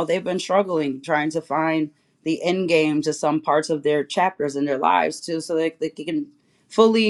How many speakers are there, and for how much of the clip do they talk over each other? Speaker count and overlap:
one, no overlap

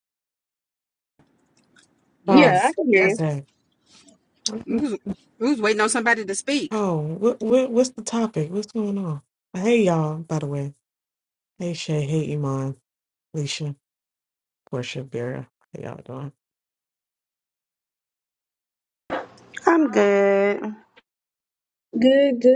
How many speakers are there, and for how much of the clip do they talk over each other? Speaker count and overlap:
four, about 5%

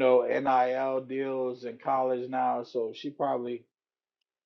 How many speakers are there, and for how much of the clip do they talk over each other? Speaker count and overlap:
one, no overlap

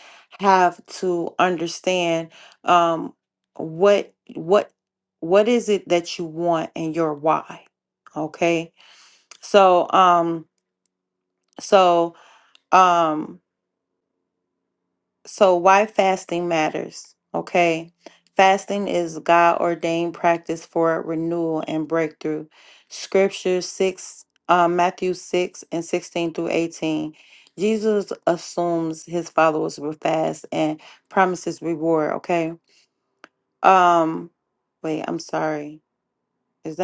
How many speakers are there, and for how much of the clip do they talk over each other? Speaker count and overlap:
one, no overlap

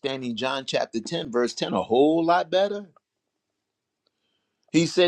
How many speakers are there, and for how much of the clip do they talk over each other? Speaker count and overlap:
one, no overlap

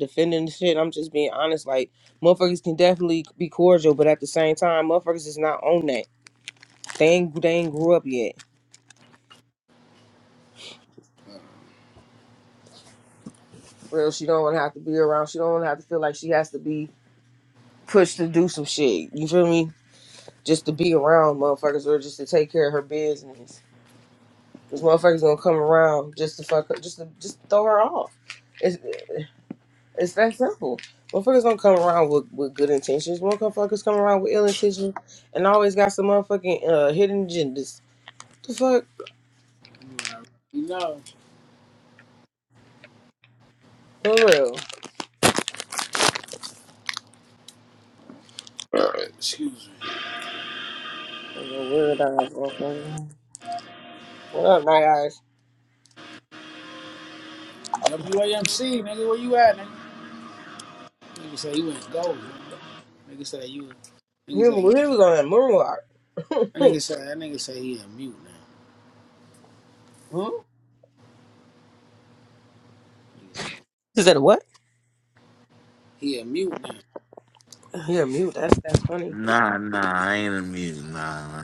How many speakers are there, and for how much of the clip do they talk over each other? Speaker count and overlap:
three, about 1%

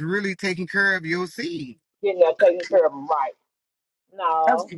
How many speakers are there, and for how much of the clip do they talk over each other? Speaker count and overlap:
two, about 6%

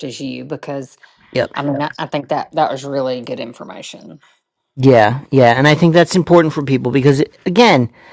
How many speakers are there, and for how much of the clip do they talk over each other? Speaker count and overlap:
two, no overlap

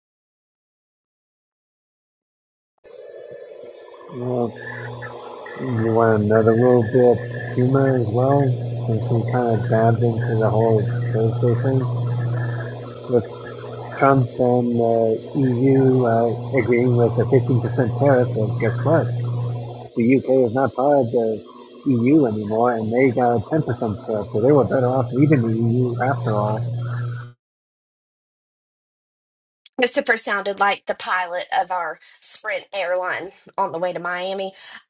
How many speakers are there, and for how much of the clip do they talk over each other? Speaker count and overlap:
two, no overlap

